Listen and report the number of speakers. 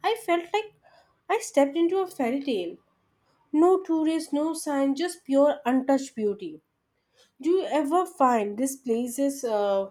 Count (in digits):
1